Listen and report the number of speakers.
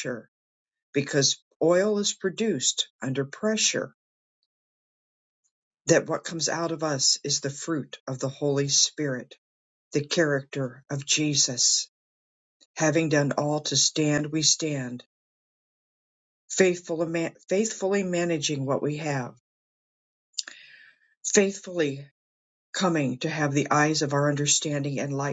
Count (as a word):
one